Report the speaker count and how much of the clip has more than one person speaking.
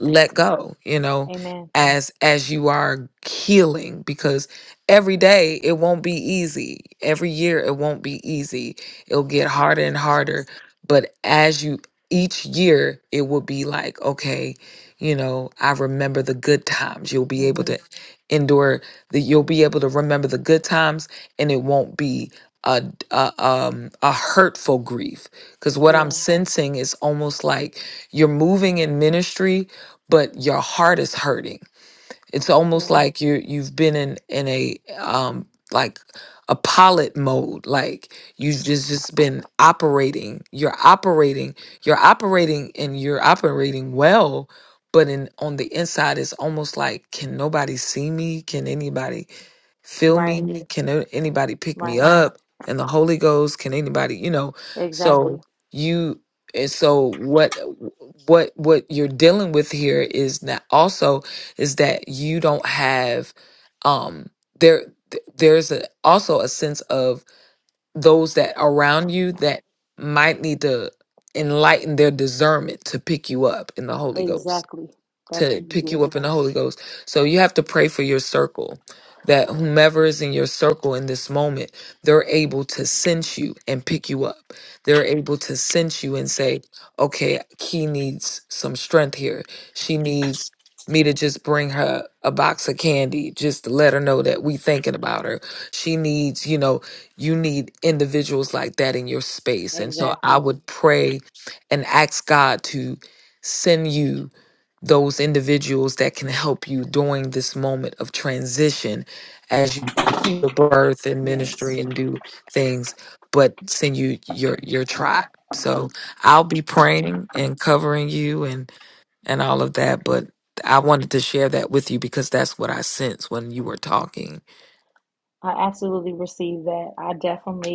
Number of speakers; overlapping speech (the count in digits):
2, about 3%